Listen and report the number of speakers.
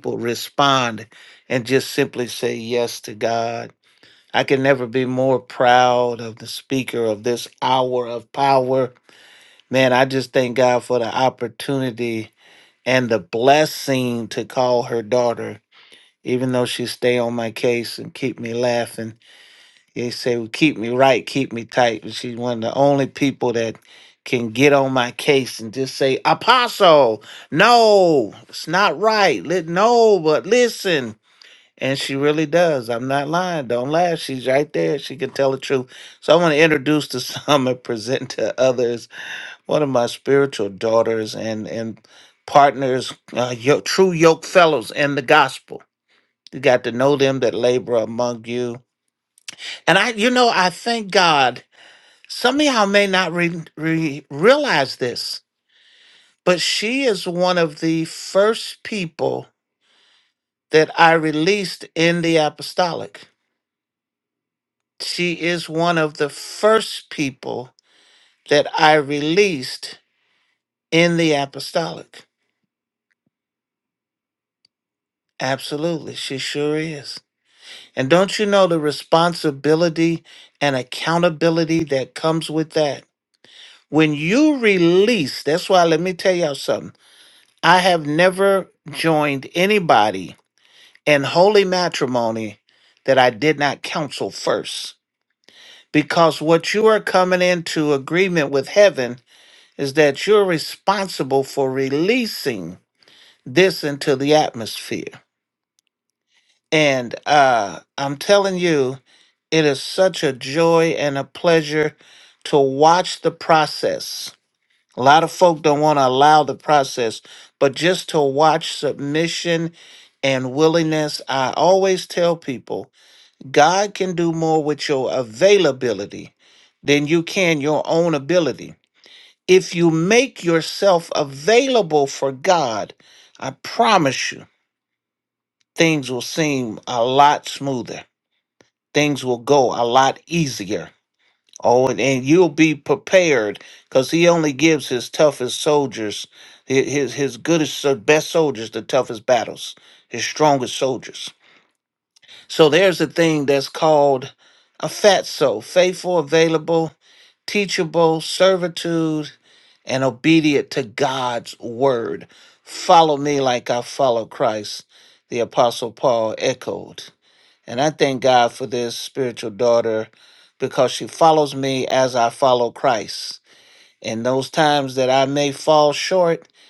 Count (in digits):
1